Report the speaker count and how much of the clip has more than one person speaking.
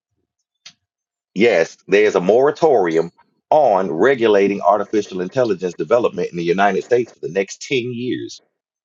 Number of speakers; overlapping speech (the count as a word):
one, no overlap